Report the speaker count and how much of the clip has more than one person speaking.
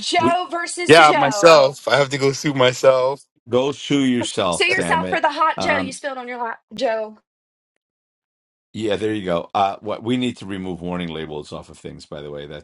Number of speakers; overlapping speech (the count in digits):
3, about 15%